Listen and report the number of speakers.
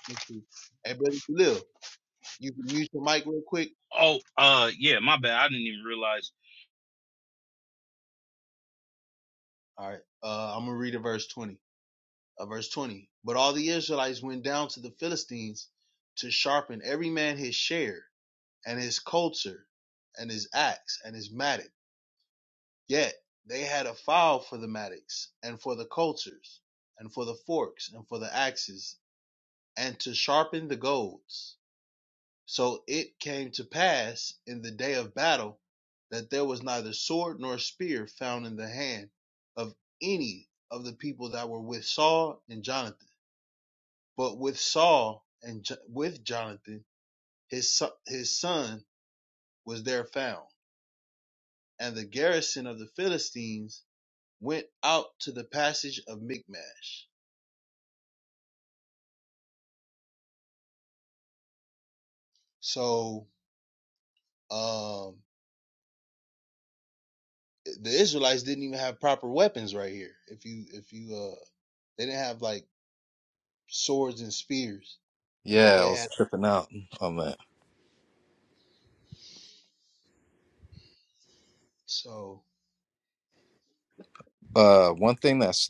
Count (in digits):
3